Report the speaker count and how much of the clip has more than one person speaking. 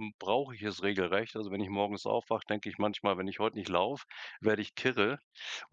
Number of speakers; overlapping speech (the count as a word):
one, no overlap